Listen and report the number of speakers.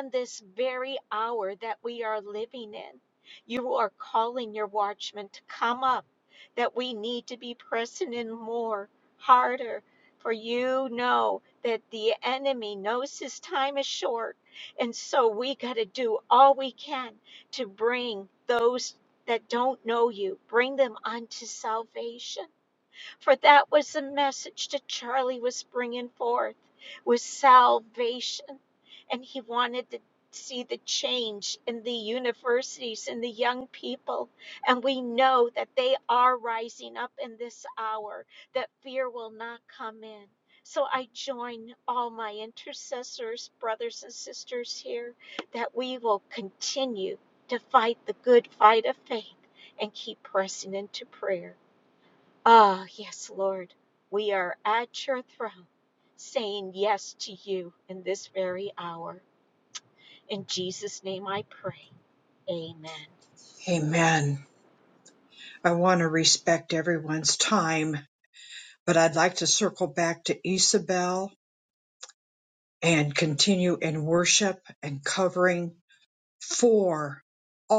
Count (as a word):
two